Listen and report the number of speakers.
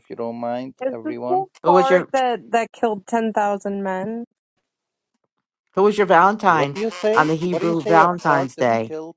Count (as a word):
three